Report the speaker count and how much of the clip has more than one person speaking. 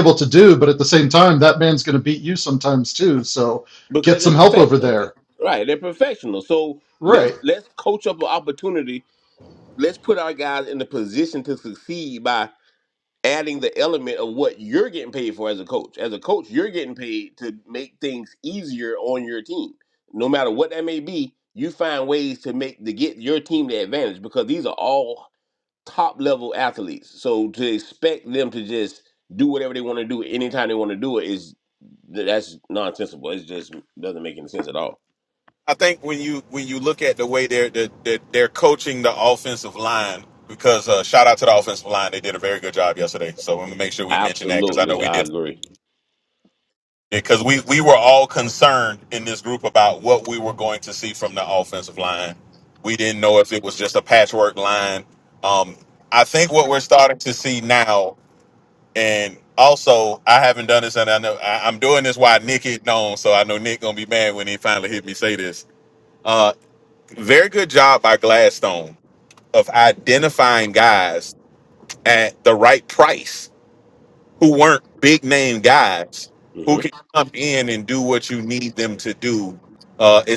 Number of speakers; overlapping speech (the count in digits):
3, about 3%